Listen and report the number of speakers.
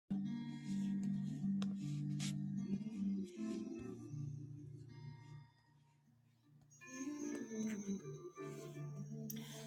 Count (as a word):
zero